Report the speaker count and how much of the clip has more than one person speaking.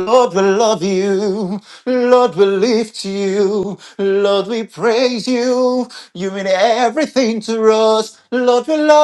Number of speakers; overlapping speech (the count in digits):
1, no overlap